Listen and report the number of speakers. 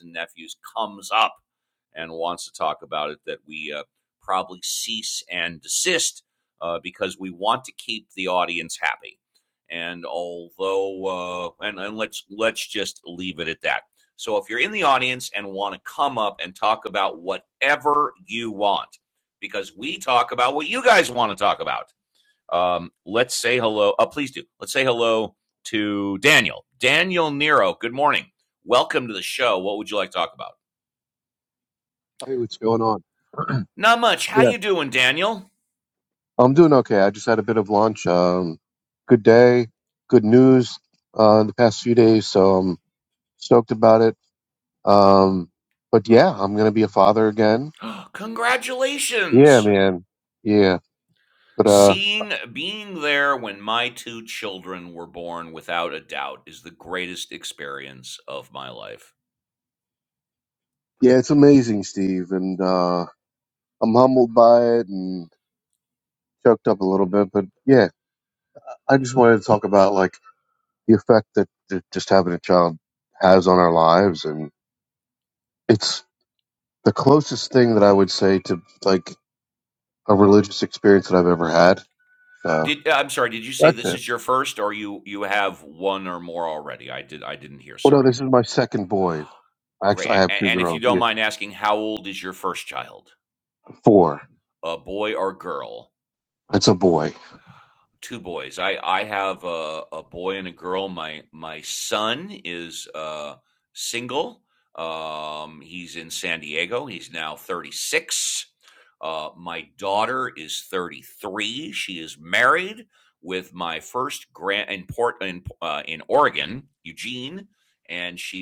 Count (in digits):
2